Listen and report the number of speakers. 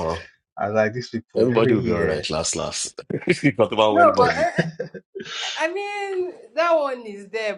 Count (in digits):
3